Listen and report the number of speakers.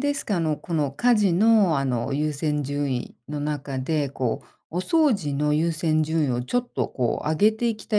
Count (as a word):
one